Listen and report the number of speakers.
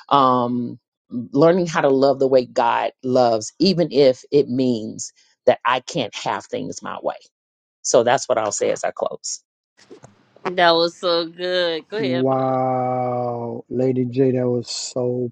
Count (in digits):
3